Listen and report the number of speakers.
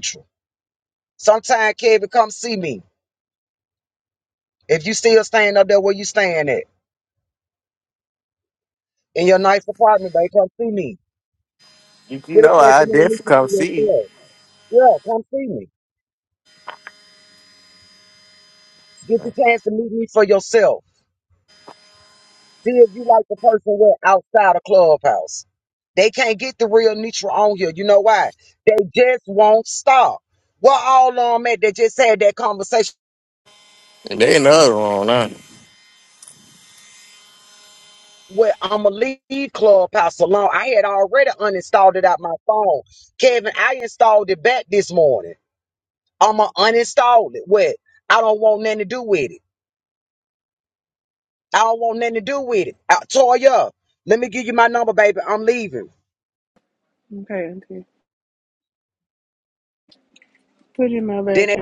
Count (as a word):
three